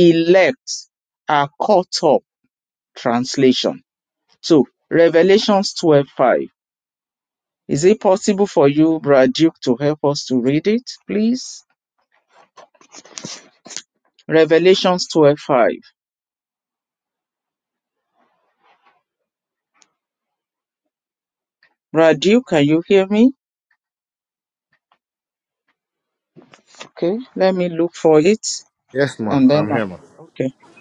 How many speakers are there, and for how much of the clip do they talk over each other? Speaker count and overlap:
2, about 2%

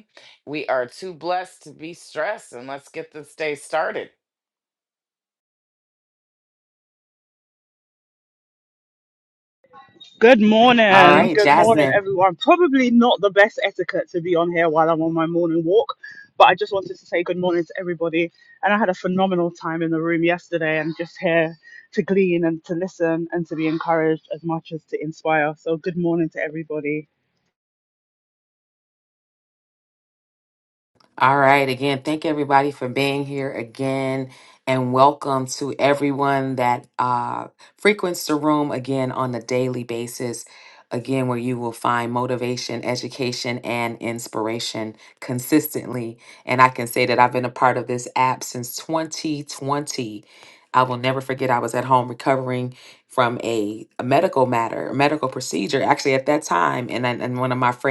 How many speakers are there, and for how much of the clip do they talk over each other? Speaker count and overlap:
3, about 2%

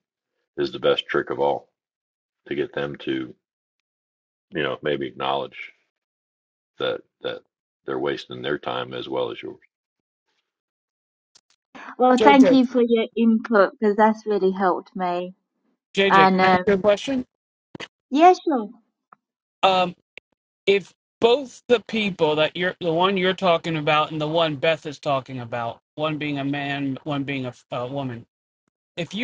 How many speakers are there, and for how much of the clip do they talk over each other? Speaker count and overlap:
3, about 3%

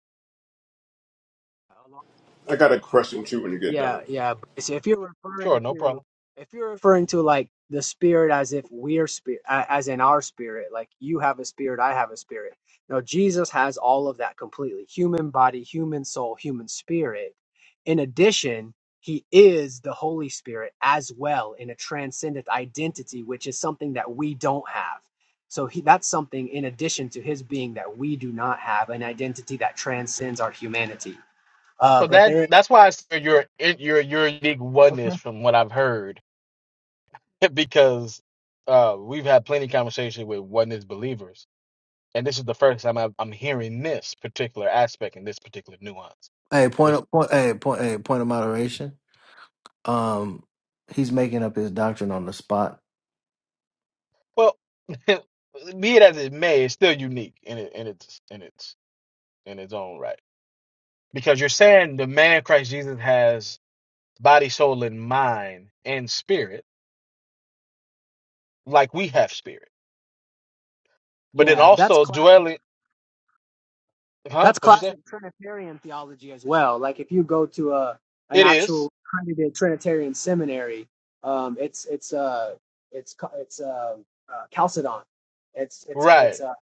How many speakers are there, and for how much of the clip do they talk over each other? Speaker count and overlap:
4, about 4%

